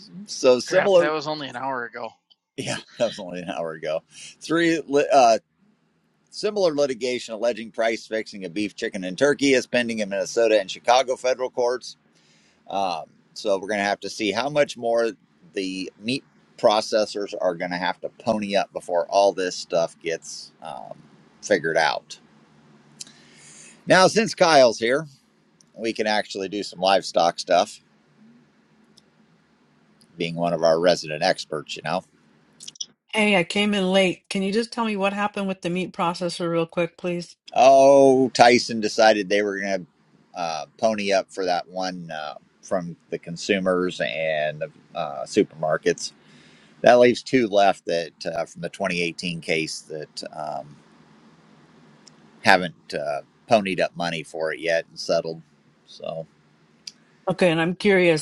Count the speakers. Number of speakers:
3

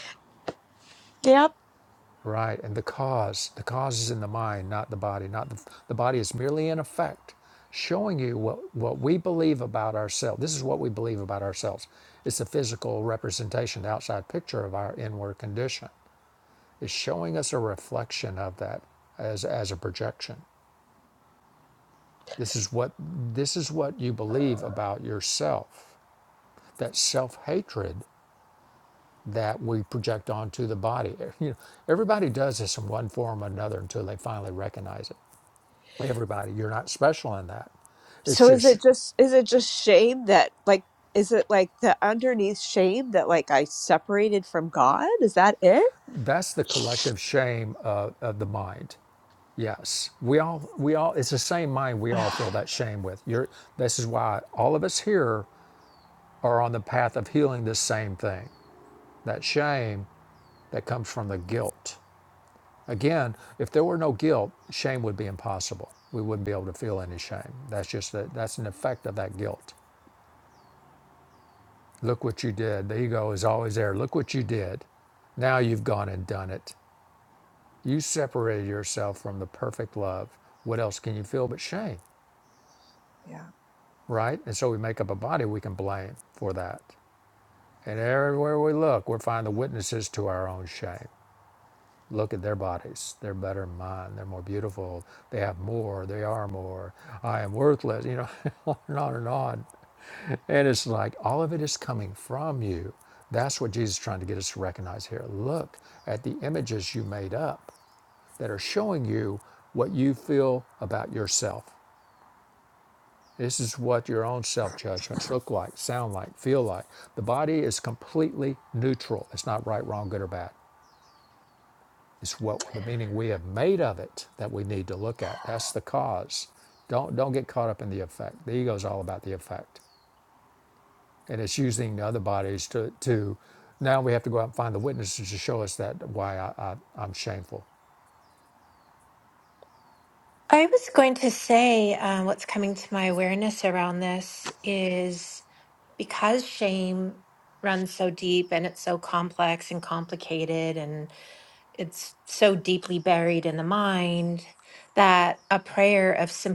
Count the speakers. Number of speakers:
3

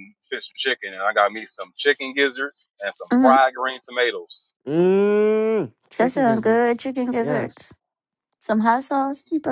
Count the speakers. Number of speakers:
3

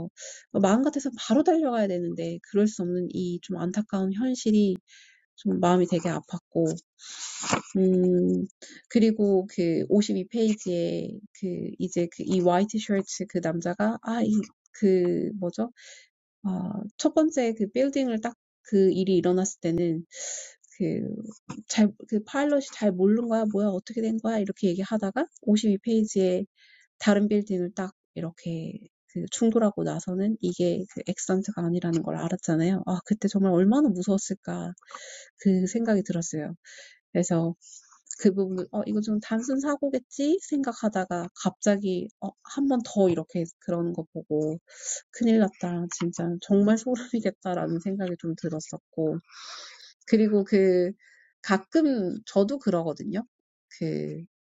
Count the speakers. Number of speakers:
1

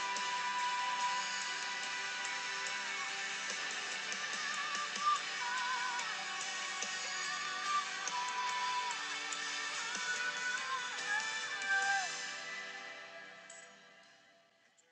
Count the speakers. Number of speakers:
0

